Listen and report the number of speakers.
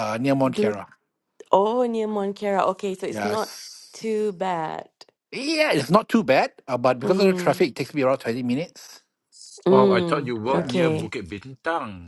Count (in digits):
3